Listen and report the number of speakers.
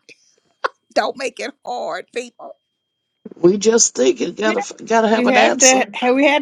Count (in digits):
3